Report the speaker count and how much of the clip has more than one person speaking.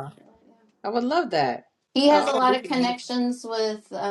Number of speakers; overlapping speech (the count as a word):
two, about 21%